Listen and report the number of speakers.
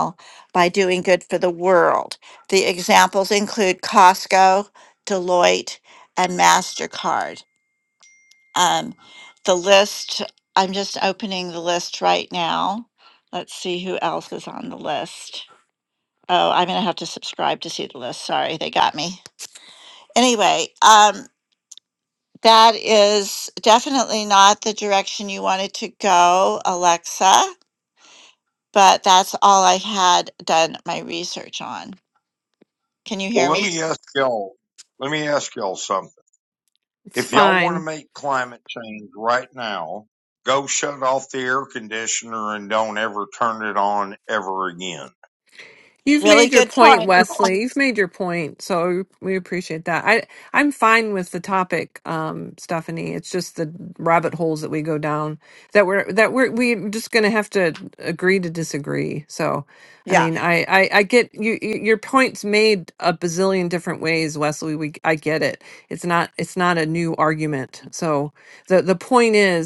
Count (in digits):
3